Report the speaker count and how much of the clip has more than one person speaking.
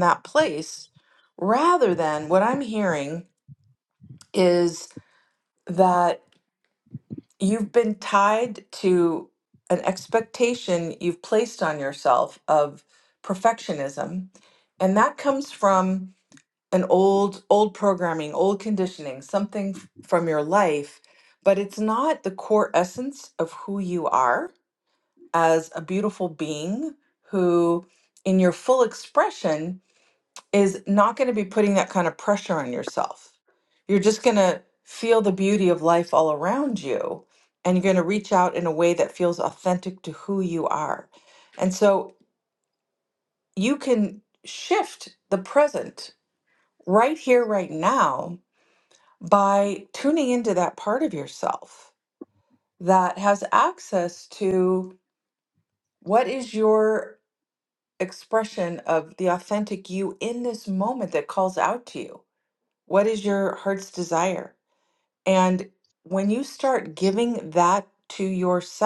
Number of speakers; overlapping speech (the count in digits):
1, no overlap